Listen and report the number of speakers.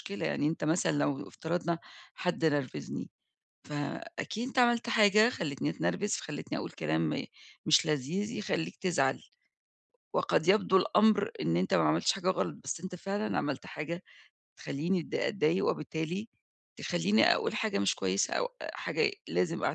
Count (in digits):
1